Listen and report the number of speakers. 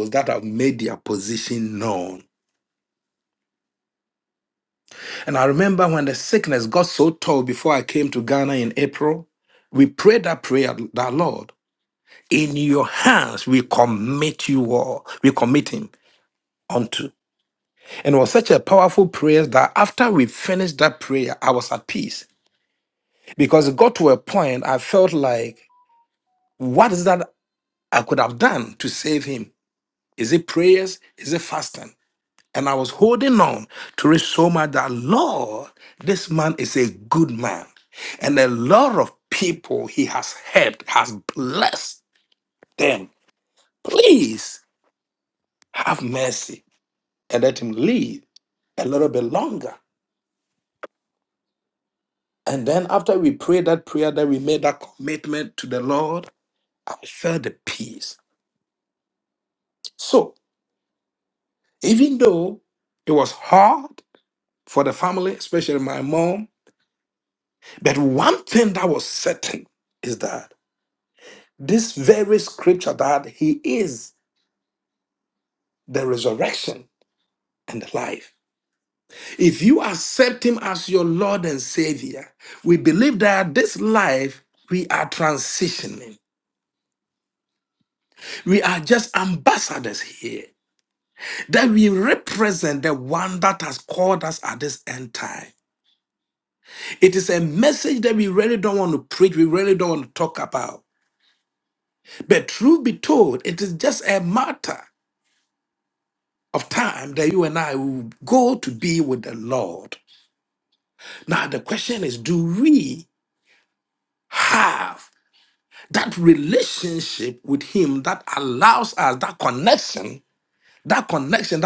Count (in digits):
1